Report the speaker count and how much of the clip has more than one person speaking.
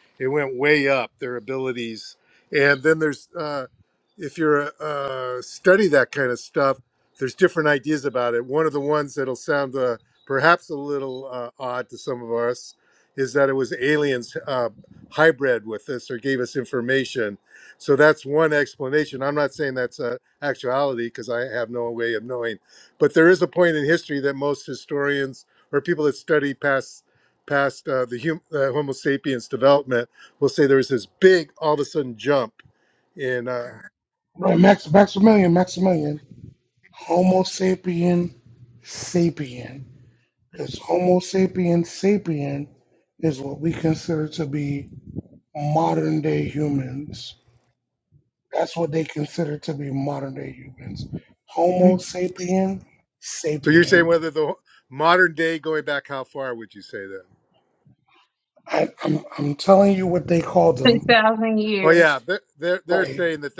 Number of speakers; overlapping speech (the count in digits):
3, about 2%